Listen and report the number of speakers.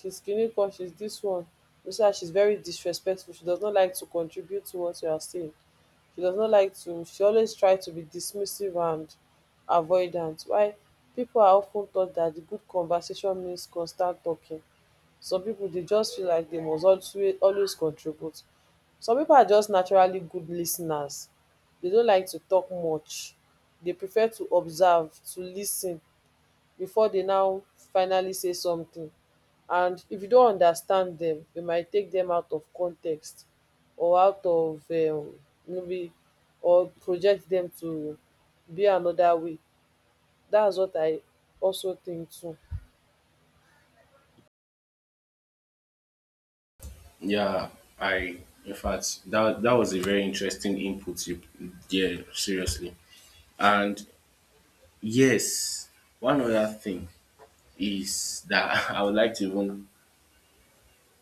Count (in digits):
2